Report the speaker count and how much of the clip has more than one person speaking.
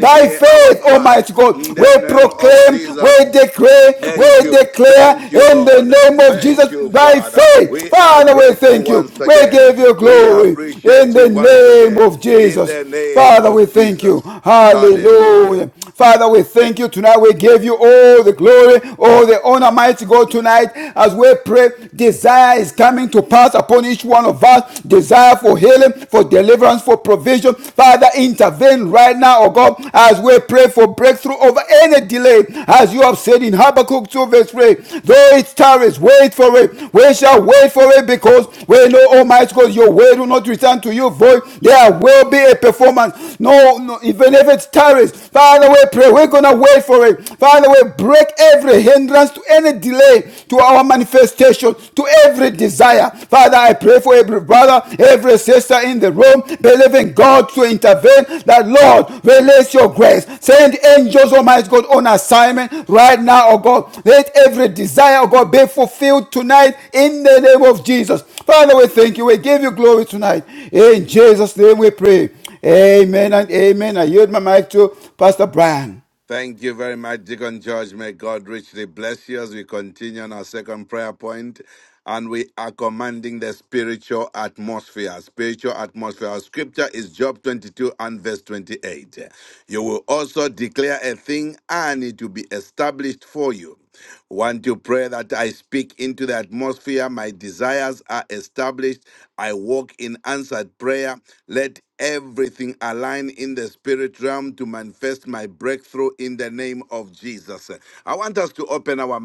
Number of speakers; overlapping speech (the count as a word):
two, about 12%